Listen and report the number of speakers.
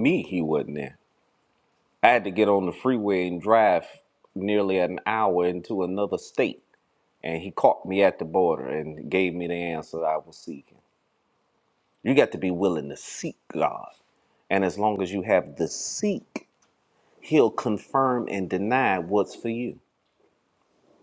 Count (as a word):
one